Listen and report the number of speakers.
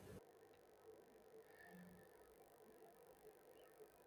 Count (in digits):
0